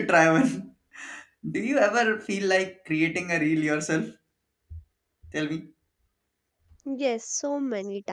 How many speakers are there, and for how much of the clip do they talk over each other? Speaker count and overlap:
2, no overlap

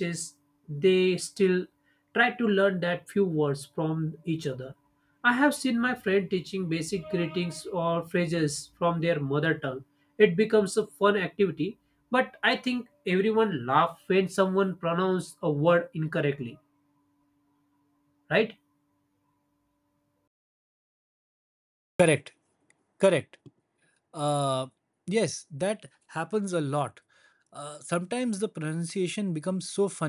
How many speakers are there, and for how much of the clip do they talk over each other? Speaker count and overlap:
2, no overlap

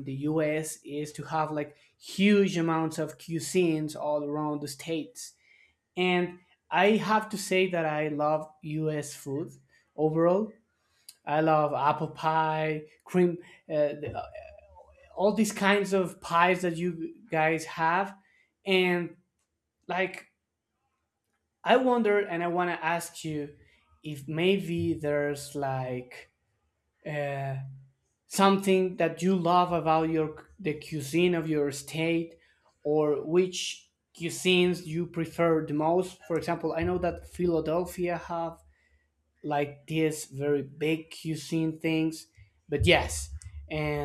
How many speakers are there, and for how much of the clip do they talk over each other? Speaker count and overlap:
1, no overlap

